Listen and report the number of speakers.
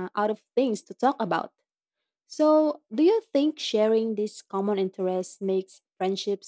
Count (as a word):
one